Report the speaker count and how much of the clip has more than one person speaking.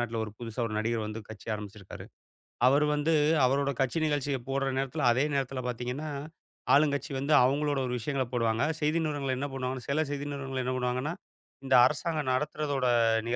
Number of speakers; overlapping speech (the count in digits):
1, no overlap